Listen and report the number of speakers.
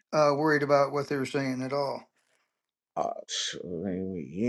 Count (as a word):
two